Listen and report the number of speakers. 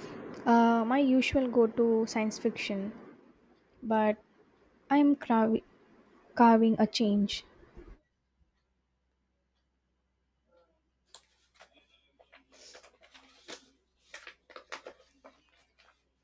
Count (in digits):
1